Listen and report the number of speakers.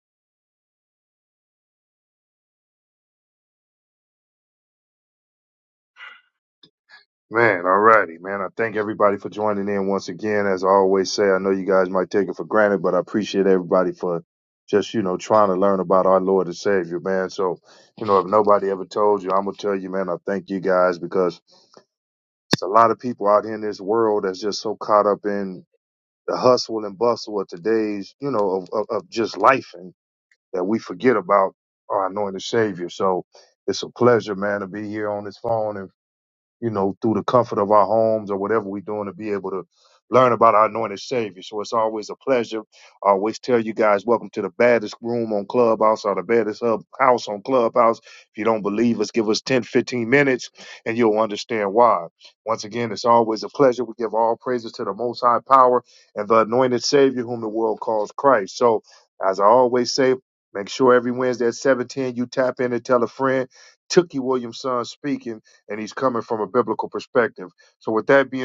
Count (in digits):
1